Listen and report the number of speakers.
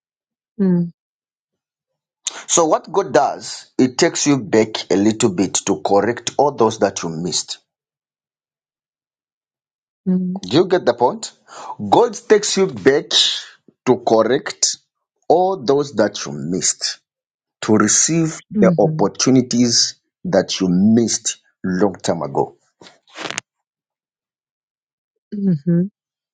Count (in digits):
2